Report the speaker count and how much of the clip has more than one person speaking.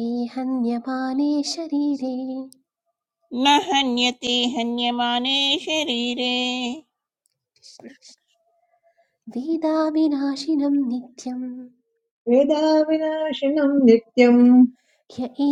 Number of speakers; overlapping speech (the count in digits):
3, no overlap